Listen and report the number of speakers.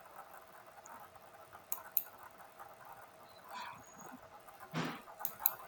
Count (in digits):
0